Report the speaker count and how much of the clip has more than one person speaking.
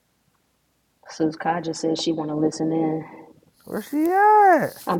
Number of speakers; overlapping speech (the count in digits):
2, no overlap